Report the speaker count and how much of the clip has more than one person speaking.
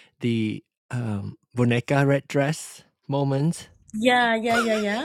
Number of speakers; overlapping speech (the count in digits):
2, no overlap